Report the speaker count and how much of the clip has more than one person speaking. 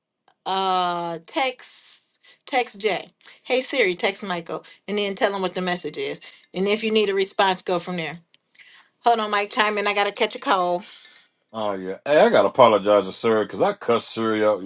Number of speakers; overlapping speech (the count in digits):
2, no overlap